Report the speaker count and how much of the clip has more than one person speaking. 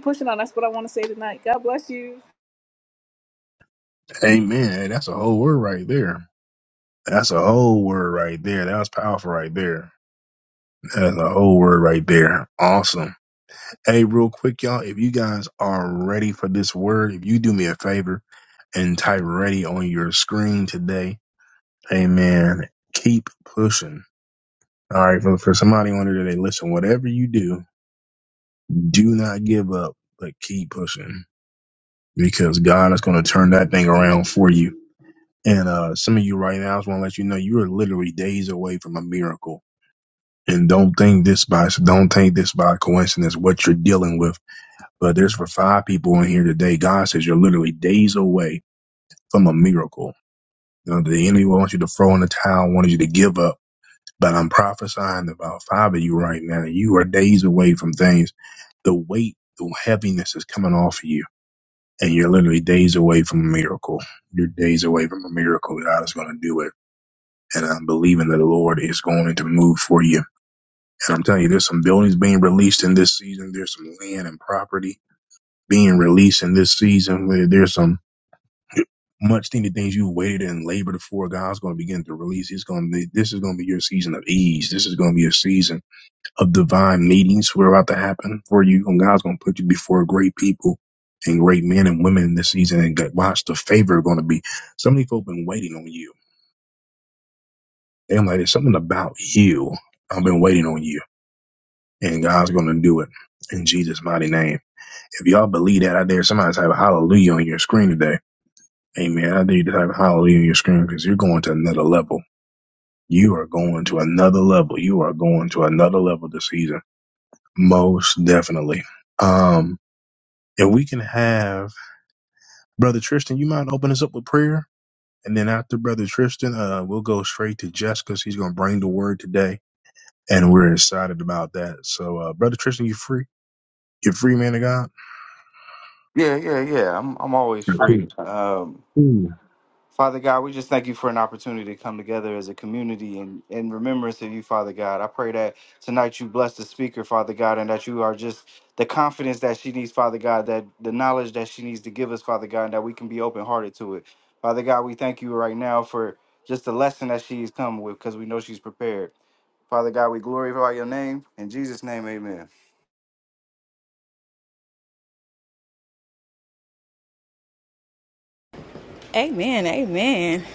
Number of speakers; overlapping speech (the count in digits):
4, no overlap